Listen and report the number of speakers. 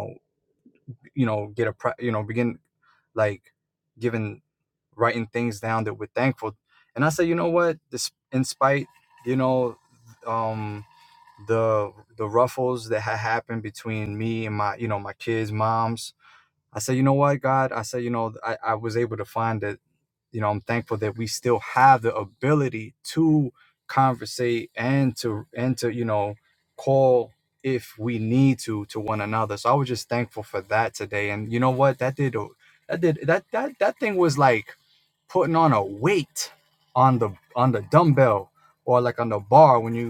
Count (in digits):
1